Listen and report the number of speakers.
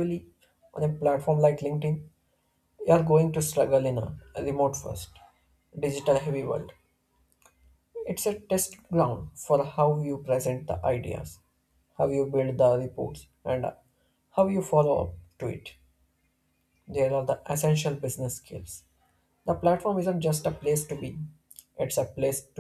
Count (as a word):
one